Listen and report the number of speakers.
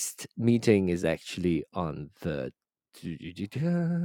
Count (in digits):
1